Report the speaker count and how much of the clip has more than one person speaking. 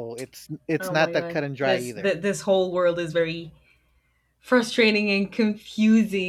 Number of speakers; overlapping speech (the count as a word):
two, about 20%